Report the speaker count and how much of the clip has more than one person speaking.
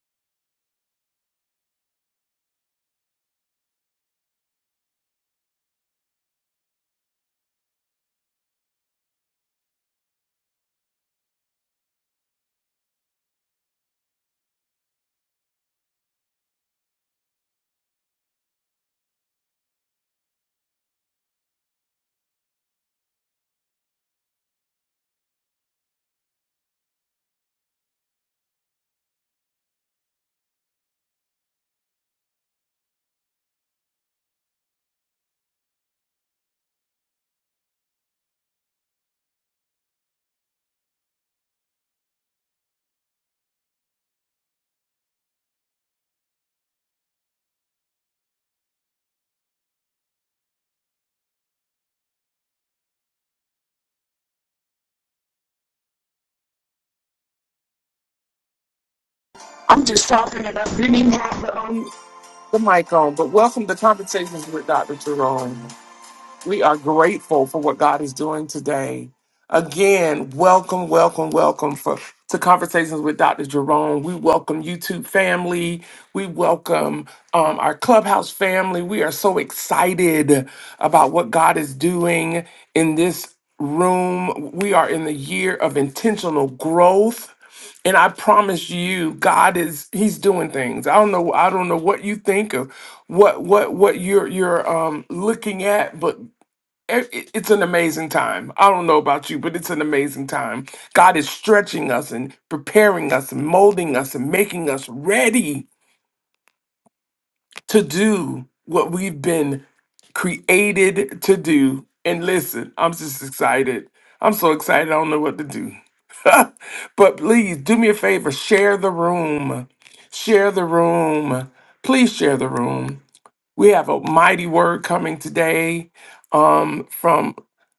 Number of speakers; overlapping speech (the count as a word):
one, no overlap